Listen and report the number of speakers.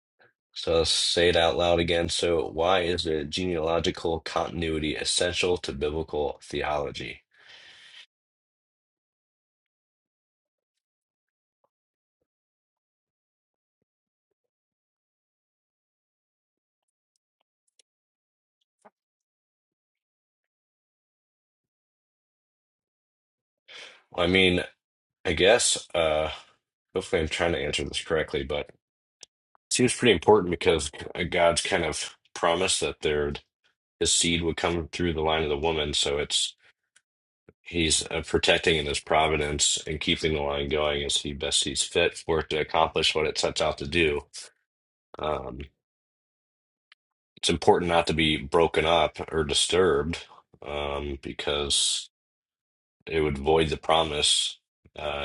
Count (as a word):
one